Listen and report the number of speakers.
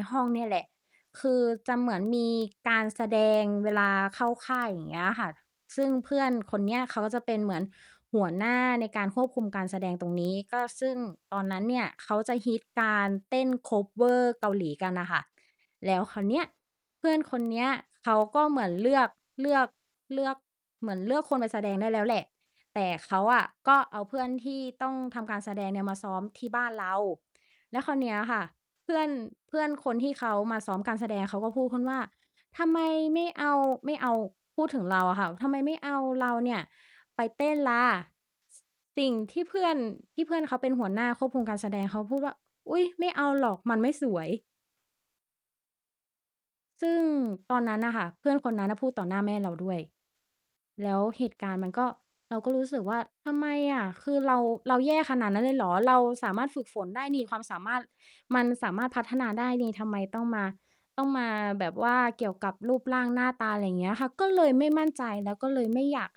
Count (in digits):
1